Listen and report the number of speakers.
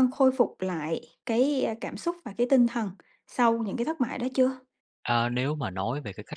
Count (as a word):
two